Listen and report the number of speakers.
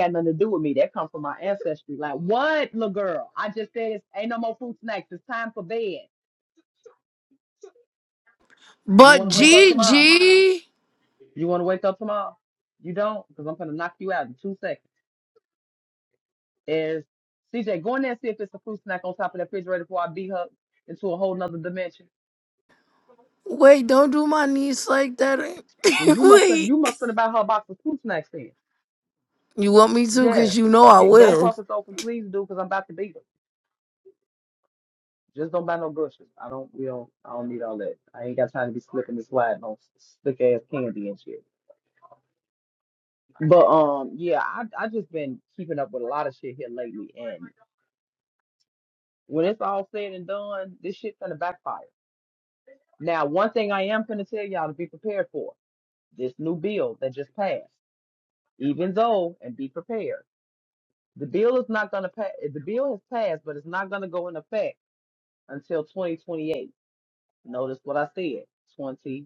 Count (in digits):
2